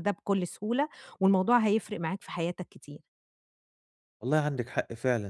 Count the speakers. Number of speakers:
2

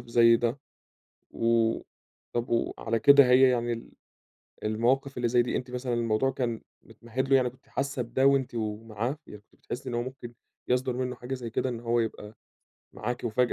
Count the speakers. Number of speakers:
1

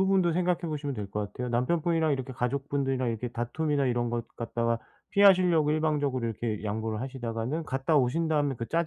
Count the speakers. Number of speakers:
1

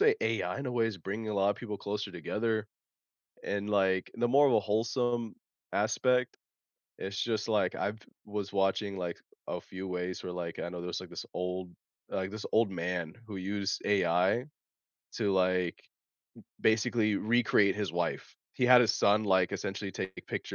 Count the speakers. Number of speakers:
1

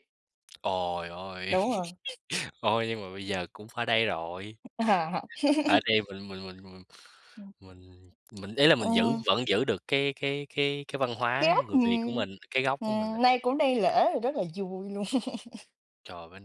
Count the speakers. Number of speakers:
2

